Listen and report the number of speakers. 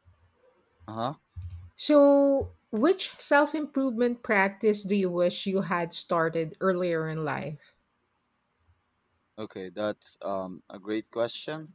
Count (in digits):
2